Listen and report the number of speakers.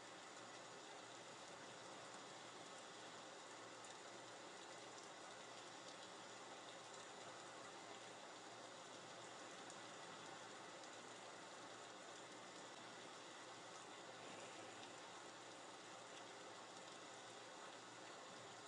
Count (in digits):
0